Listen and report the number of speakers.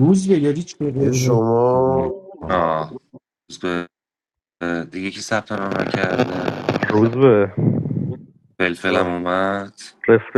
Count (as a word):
four